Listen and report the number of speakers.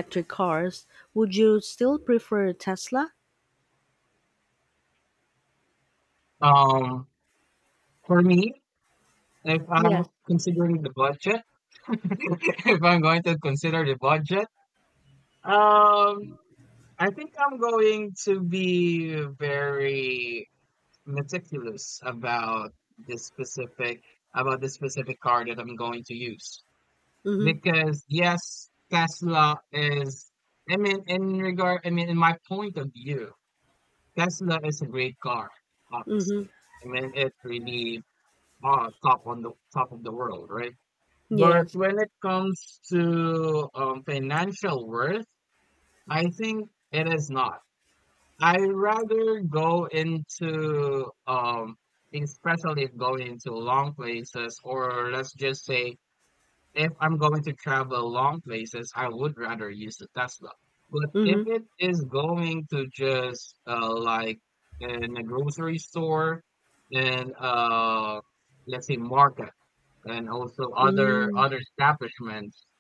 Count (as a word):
two